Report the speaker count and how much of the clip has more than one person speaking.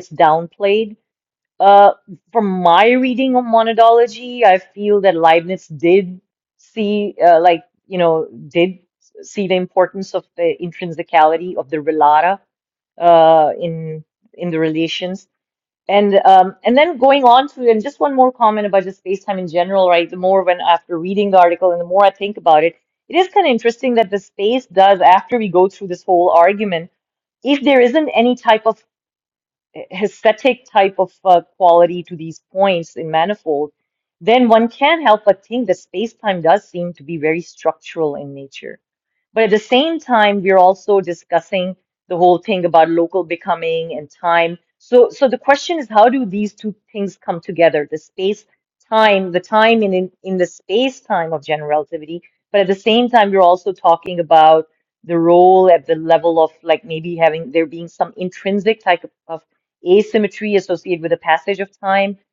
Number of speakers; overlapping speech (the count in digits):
1, no overlap